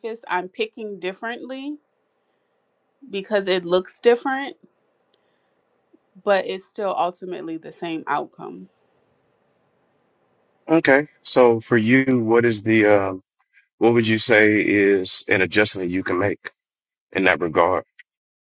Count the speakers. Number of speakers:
two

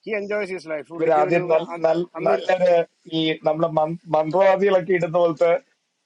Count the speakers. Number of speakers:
two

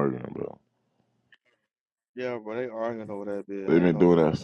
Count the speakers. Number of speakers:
two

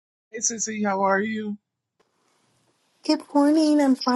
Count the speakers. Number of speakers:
two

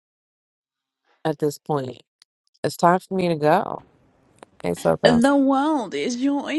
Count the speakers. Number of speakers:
two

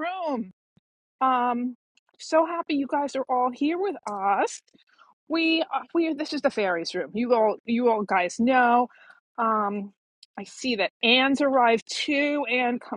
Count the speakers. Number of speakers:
one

